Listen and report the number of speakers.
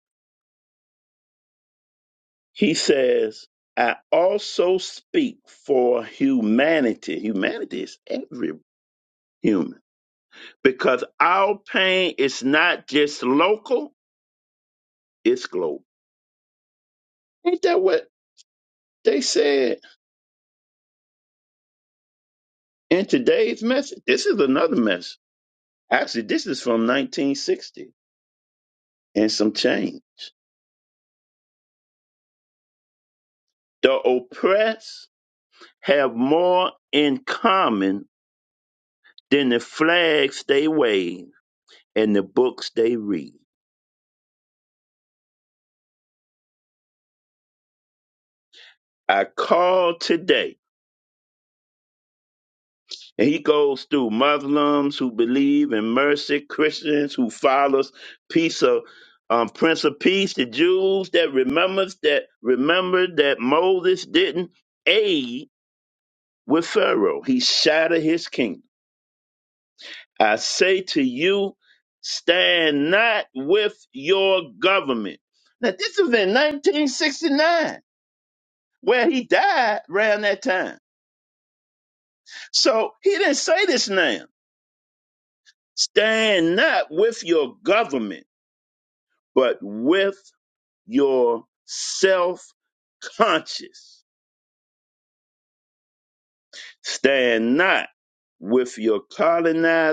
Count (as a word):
one